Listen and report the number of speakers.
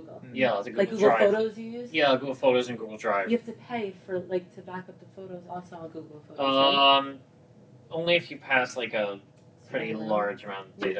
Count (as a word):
two